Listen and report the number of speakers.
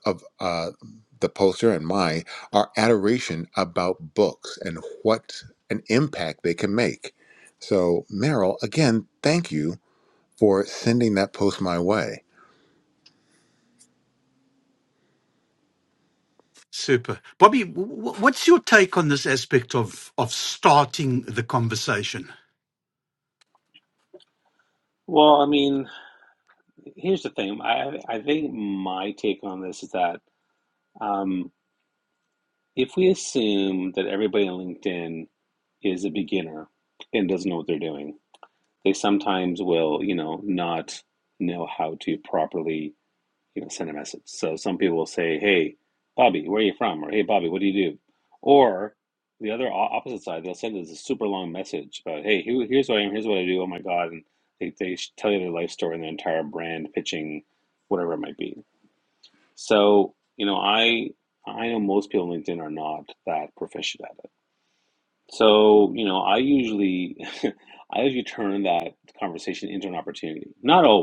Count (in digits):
3